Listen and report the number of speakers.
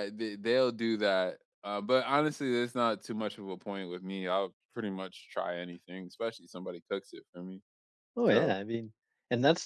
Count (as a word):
two